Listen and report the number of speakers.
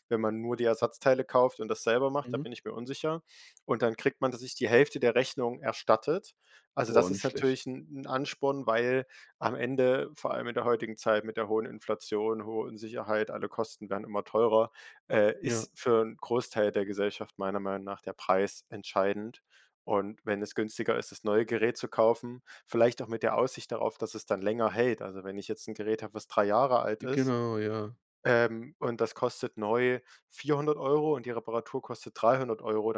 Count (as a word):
two